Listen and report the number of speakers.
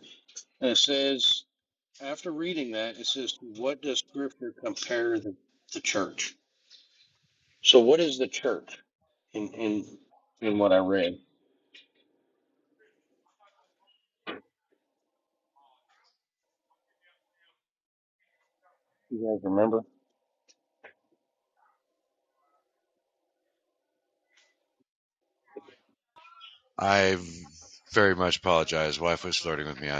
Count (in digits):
2